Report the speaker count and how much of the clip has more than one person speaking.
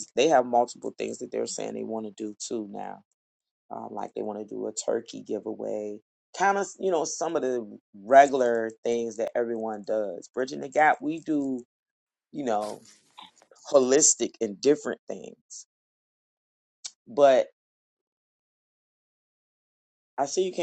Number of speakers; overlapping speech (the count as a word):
one, no overlap